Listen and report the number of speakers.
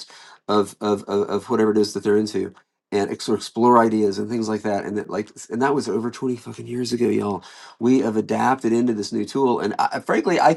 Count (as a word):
one